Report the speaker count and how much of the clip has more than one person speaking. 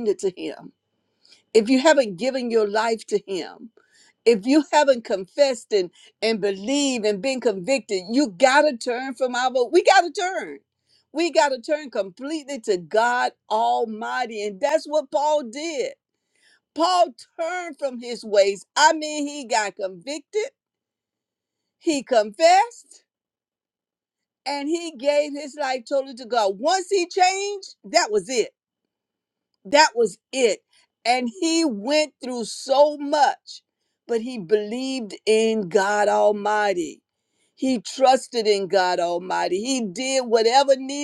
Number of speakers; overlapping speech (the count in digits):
1, no overlap